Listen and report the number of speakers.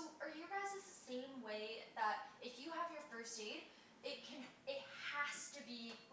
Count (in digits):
1